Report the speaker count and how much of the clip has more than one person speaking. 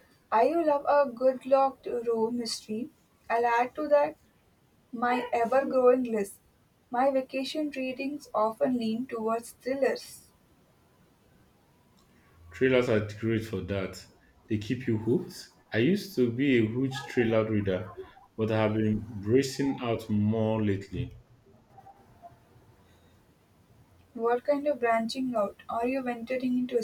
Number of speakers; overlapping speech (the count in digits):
2, no overlap